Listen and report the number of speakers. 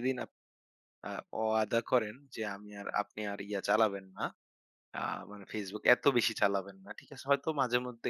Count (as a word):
one